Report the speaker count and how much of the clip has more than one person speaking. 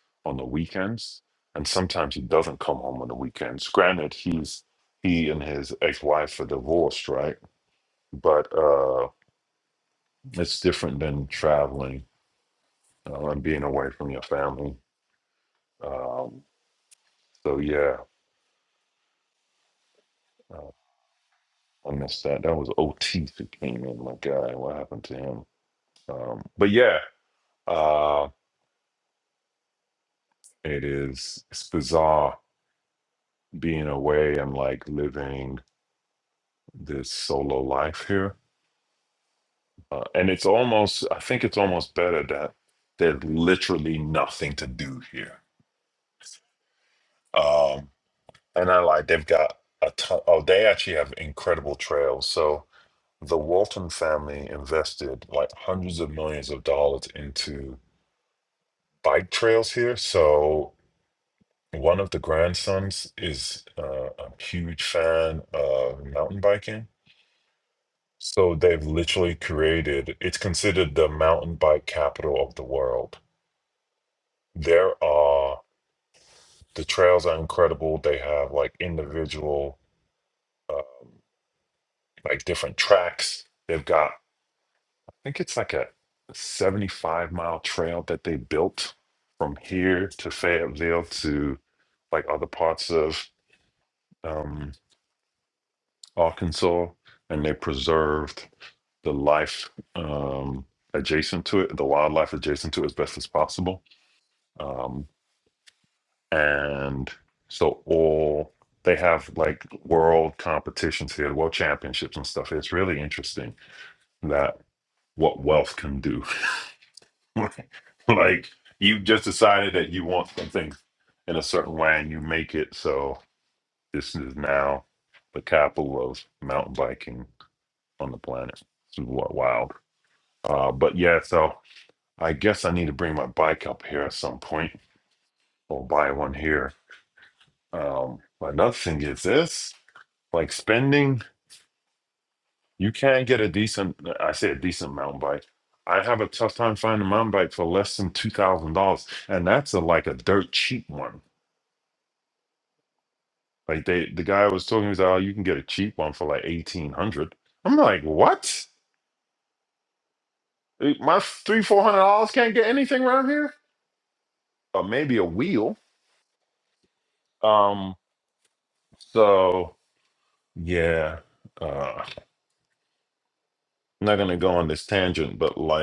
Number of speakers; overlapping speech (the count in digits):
1, no overlap